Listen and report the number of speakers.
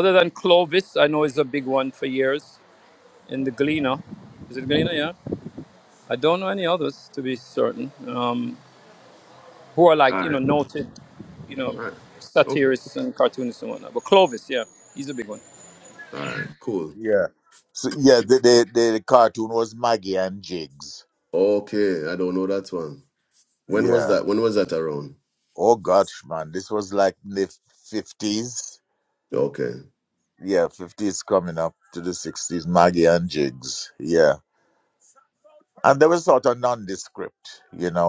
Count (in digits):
3